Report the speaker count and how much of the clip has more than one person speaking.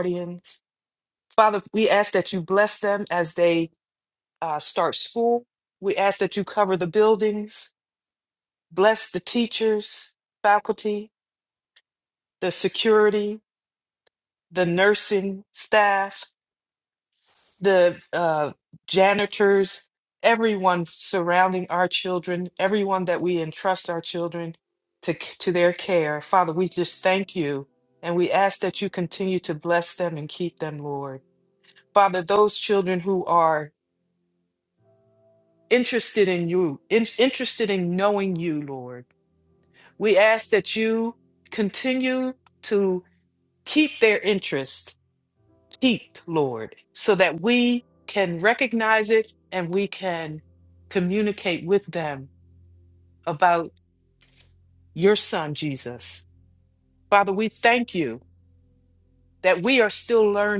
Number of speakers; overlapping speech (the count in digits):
1, no overlap